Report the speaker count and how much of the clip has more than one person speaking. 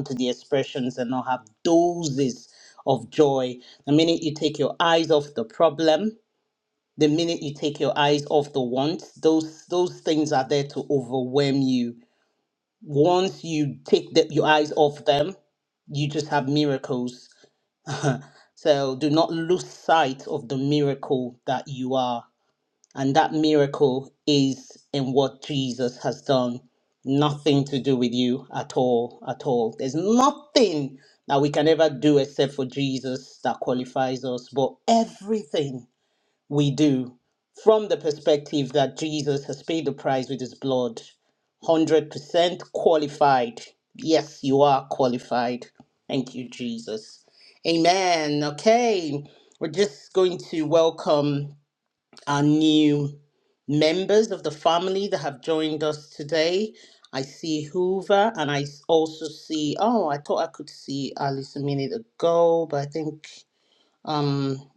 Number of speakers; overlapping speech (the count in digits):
1, no overlap